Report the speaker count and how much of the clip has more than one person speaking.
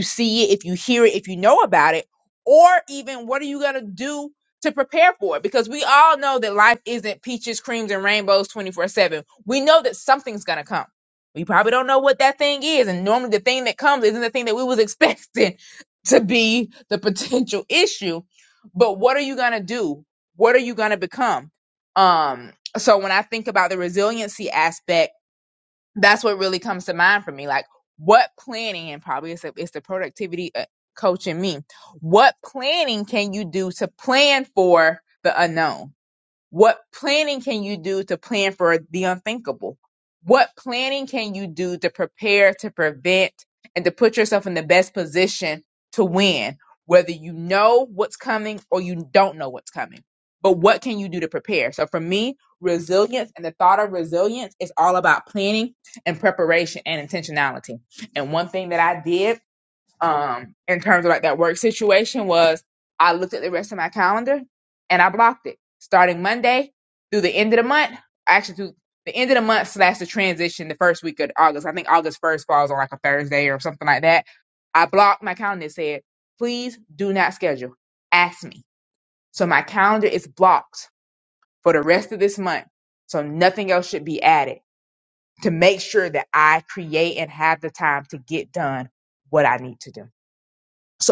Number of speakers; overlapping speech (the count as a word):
one, no overlap